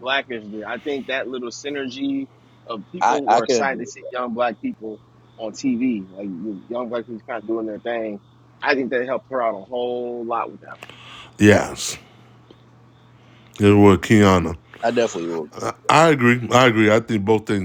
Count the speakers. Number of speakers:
three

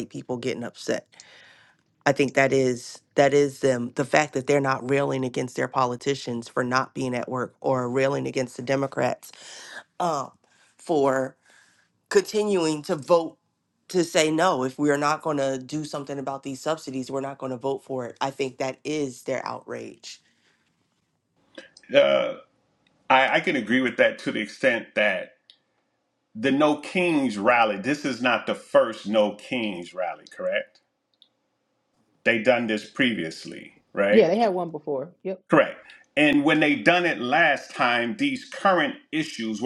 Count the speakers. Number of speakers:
three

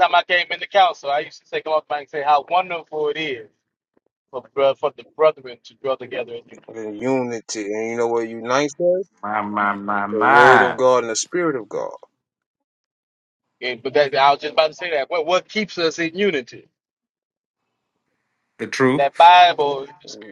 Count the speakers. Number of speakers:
three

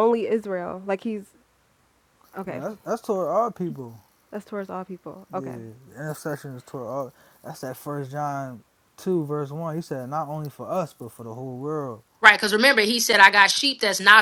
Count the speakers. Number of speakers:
three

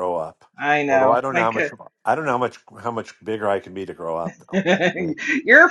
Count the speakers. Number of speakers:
two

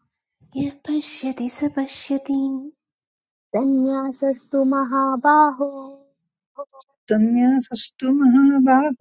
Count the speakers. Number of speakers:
three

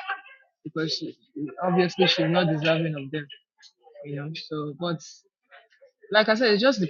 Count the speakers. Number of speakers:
one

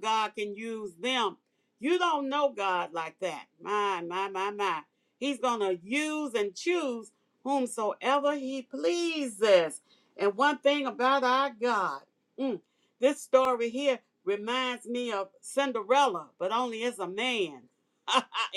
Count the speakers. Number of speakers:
one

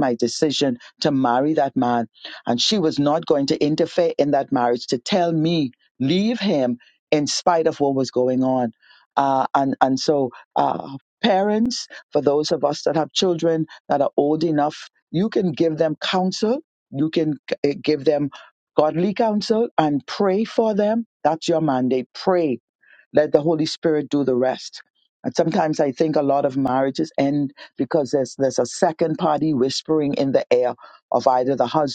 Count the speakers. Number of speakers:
one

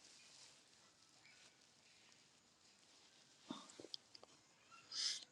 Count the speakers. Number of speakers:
zero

